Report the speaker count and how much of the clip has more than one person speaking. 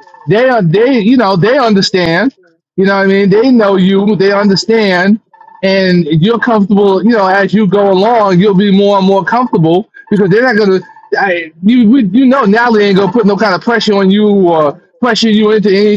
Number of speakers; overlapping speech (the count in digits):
1, no overlap